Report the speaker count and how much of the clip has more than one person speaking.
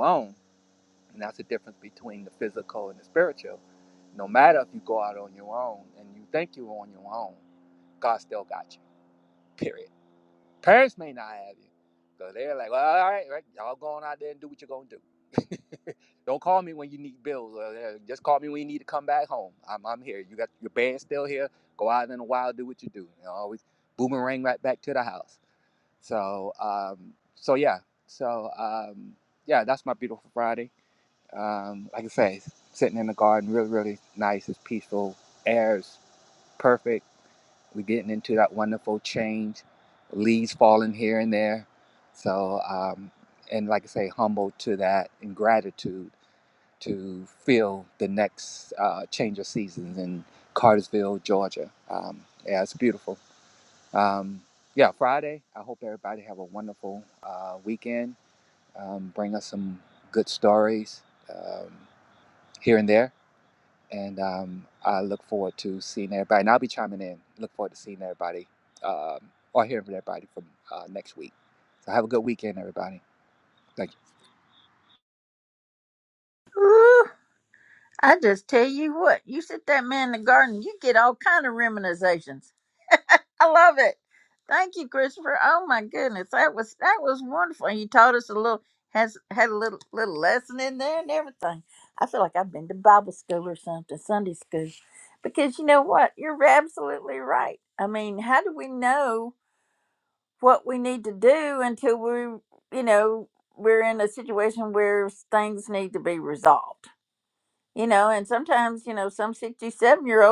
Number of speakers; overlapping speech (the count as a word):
two, no overlap